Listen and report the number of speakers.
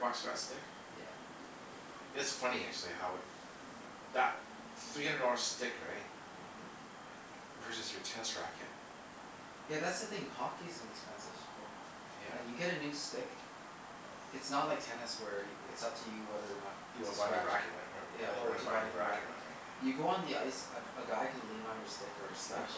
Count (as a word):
two